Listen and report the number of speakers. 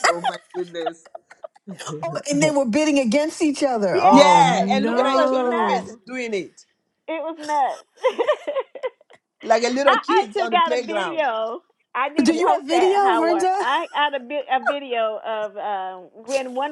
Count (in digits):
3